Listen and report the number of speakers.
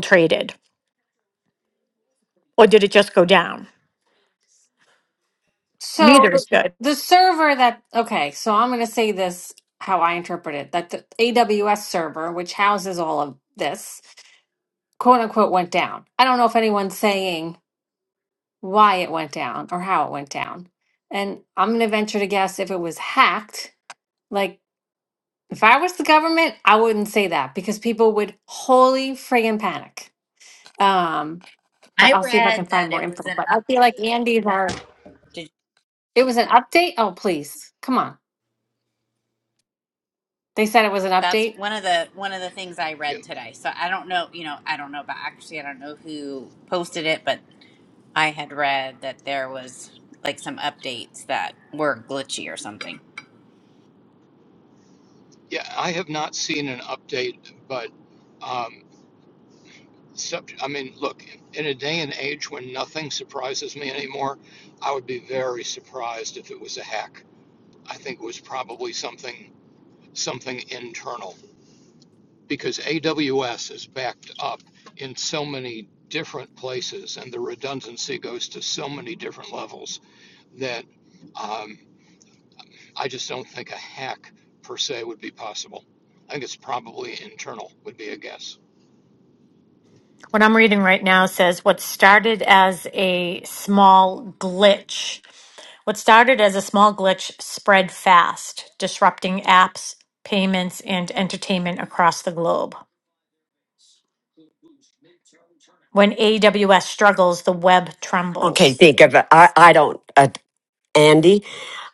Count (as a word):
five